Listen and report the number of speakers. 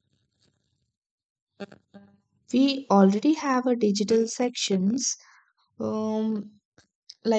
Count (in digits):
1